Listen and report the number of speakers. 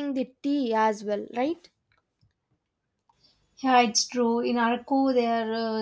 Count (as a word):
two